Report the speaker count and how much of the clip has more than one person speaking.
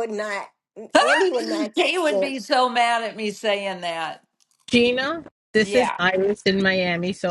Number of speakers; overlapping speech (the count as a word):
three, about 9%